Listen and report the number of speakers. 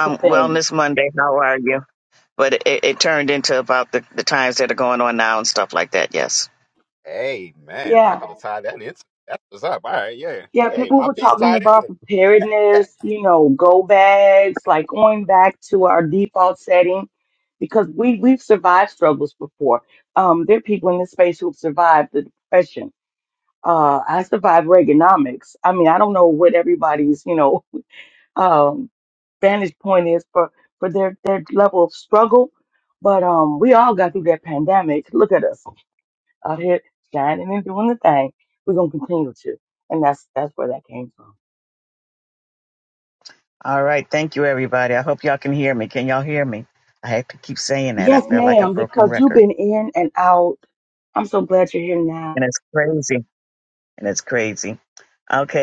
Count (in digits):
3